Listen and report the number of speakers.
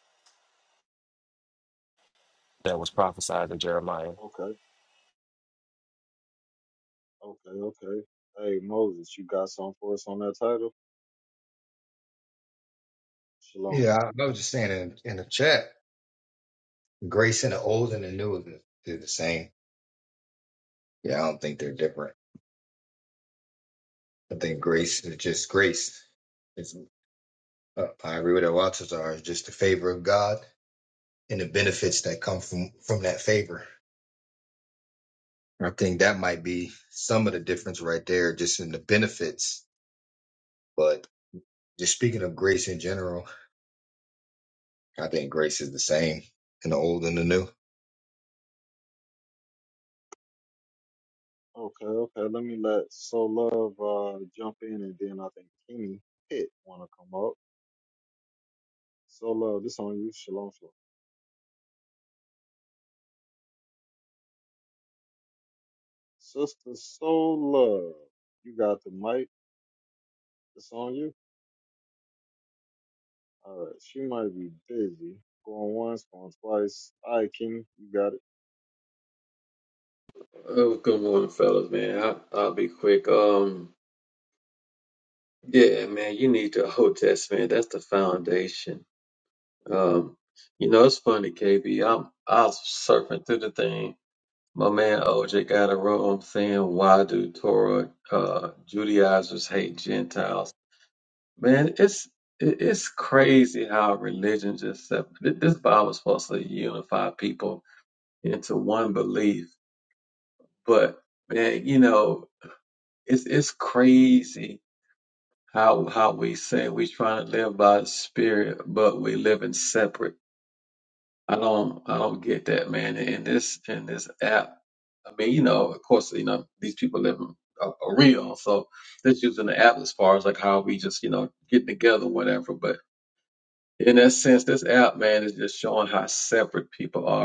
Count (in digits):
4